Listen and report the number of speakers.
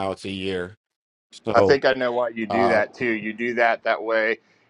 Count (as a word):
two